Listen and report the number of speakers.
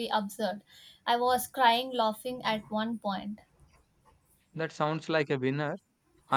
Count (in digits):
2